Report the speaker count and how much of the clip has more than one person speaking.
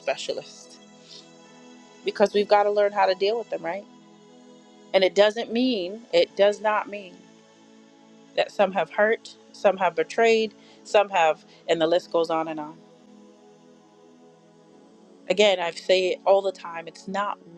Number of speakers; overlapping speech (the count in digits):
1, no overlap